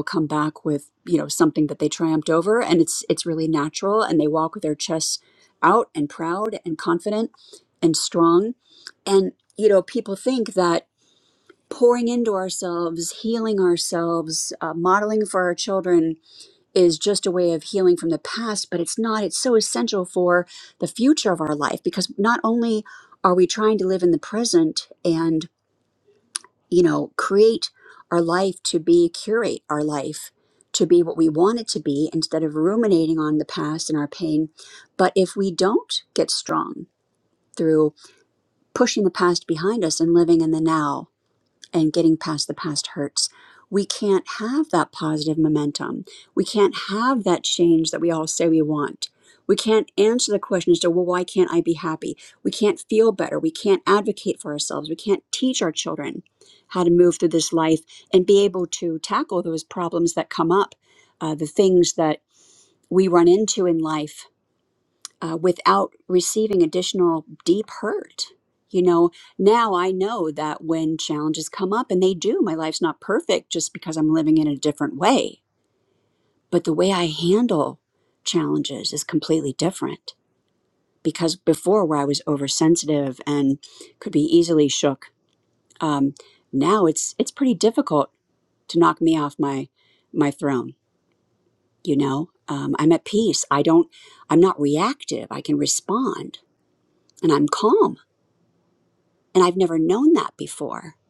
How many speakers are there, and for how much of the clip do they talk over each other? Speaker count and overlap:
one, no overlap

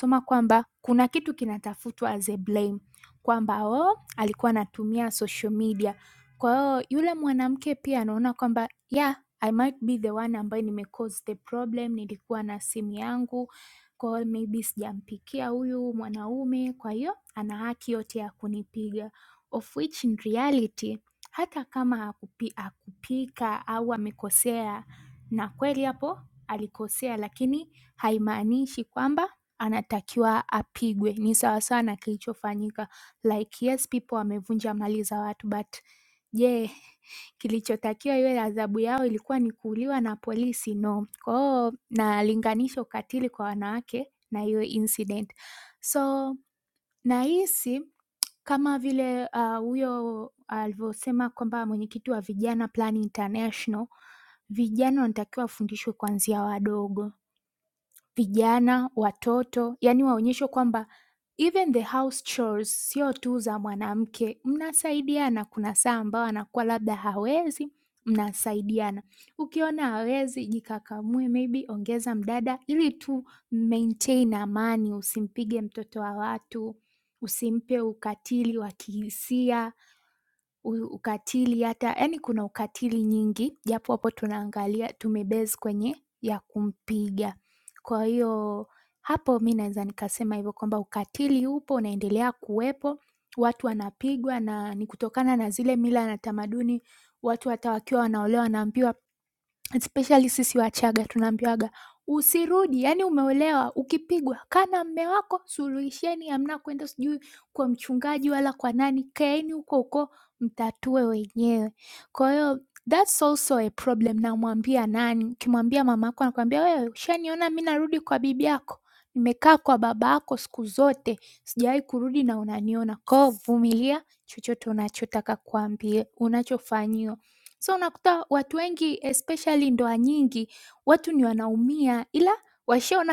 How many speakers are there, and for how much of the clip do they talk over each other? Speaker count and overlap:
one, no overlap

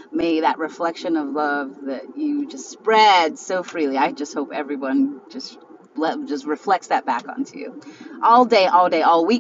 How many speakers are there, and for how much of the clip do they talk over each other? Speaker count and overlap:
one, no overlap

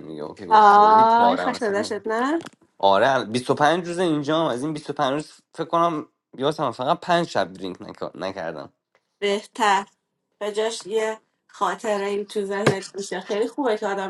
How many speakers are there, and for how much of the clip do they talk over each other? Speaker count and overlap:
two, about 10%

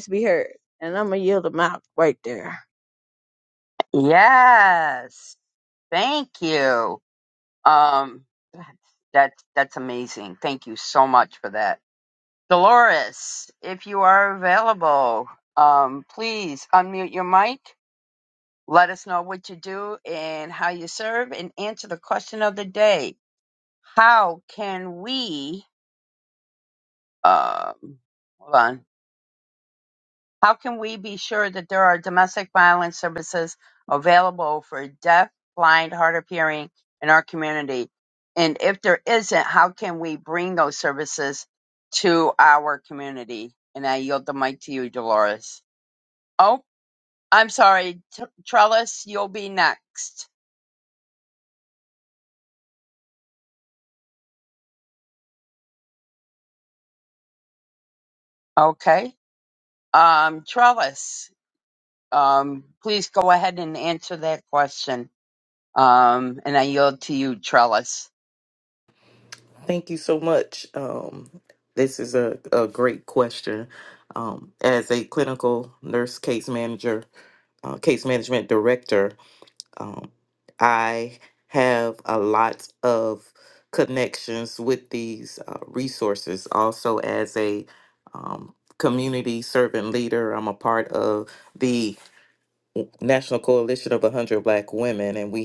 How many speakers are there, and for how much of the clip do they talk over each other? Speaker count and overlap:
three, no overlap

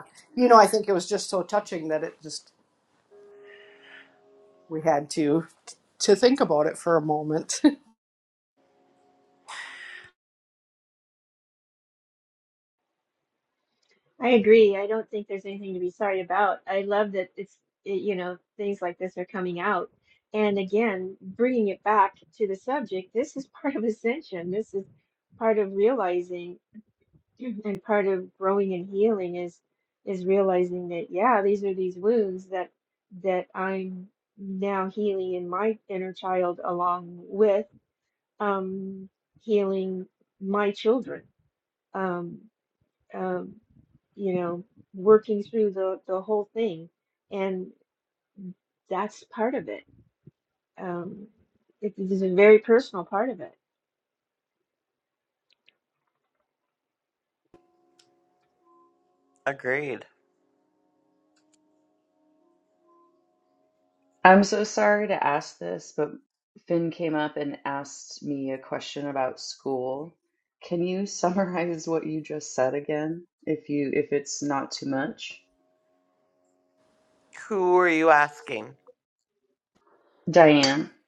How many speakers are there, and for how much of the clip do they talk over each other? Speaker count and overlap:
four, no overlap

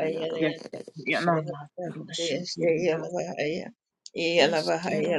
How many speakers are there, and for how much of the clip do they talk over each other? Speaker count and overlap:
three, about 52%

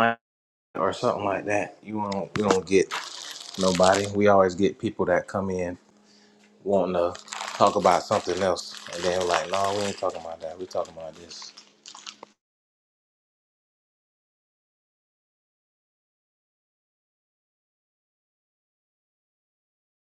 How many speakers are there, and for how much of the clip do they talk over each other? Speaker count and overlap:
one, no overlap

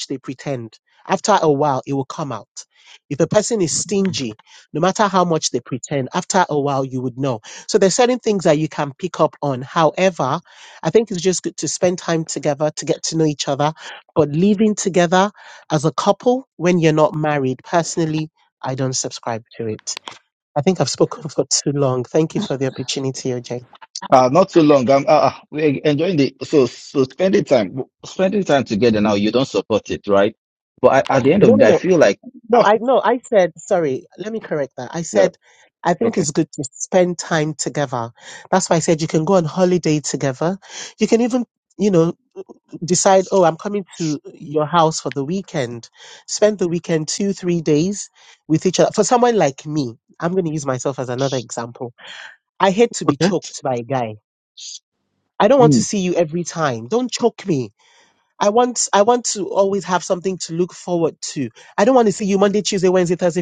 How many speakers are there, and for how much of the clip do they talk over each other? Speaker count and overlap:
two, about 2%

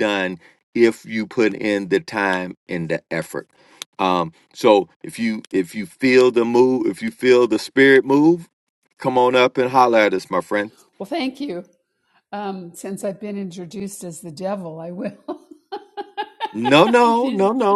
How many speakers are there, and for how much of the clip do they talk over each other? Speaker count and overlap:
two, about 3%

